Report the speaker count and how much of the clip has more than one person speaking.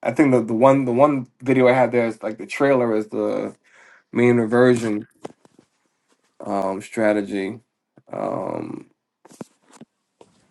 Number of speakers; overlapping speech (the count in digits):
1, no overlap